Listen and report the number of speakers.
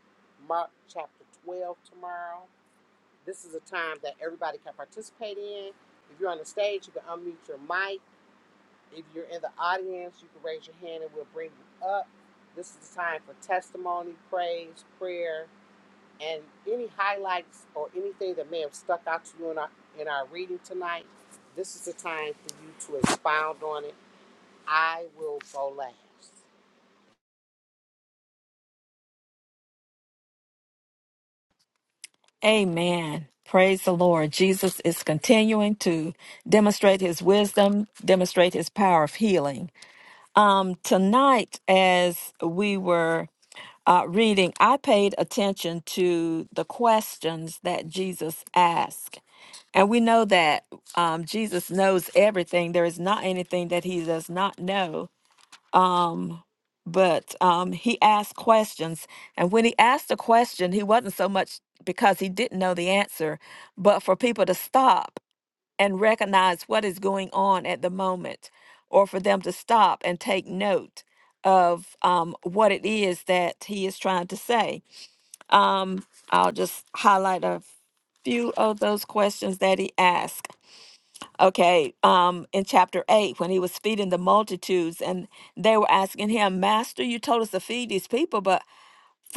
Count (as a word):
two